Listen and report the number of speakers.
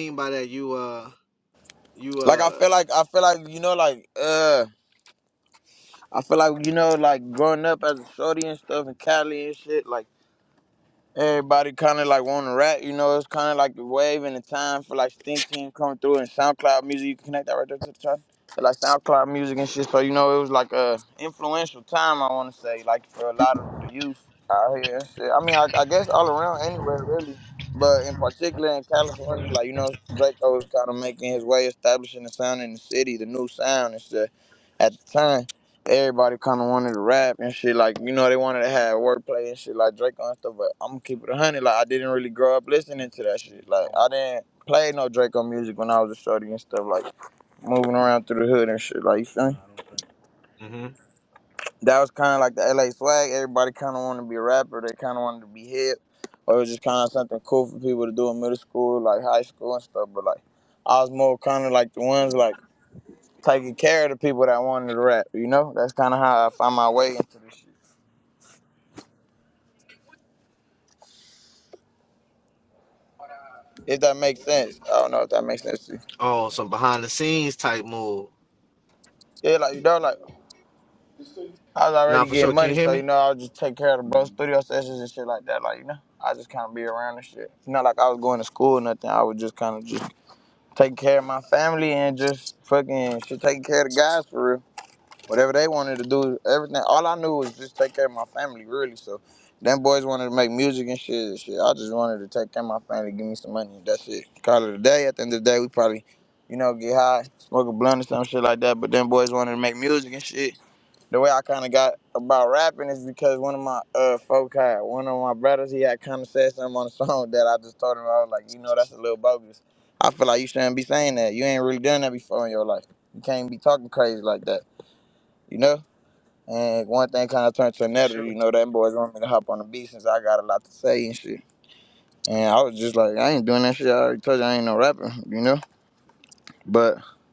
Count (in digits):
2